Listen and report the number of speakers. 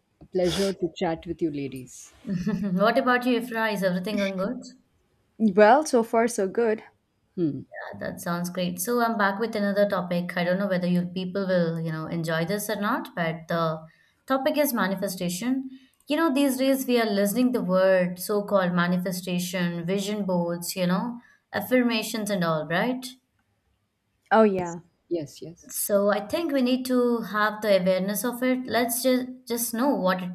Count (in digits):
3